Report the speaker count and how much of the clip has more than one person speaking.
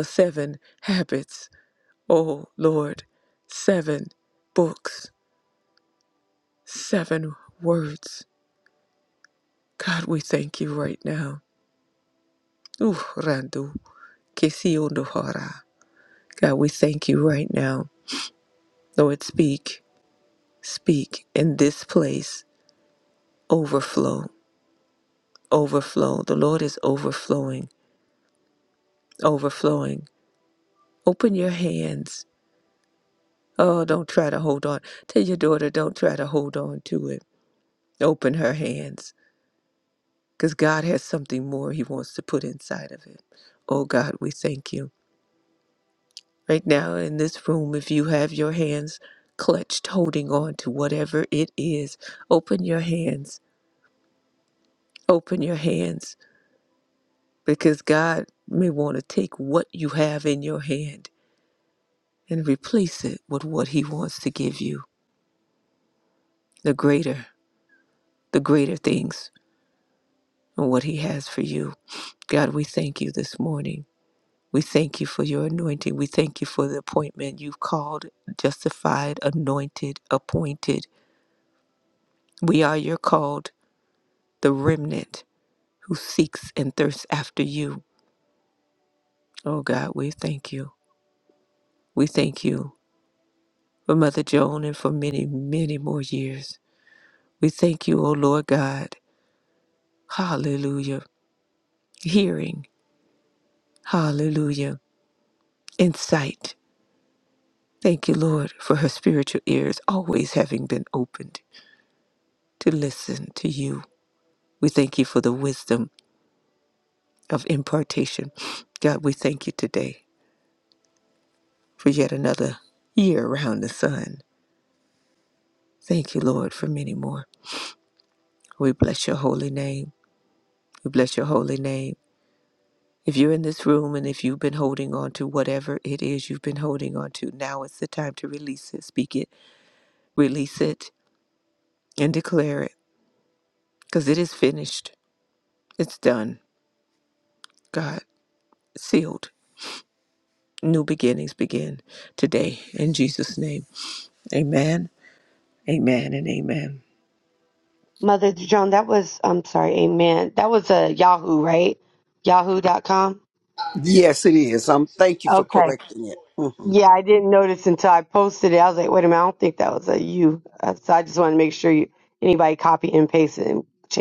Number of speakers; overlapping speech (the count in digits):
3, under 1%